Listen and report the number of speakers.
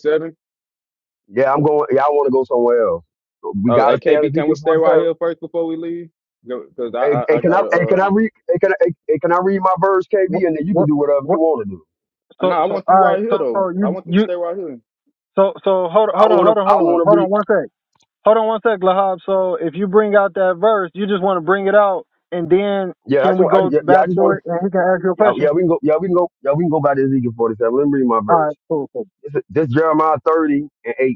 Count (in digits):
3